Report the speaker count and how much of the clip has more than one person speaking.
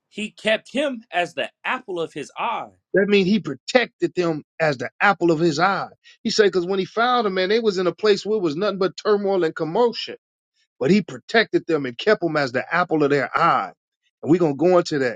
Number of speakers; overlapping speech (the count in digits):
2, no overlap